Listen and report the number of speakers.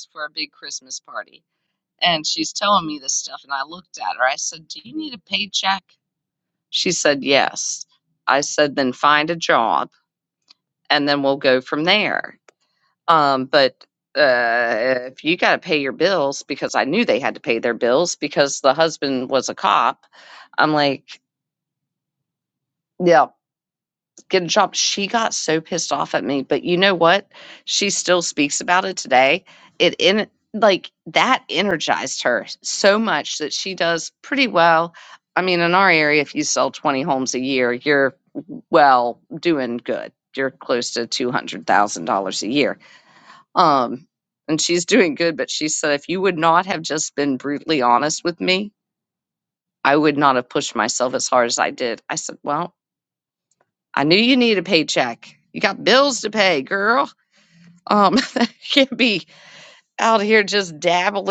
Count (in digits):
1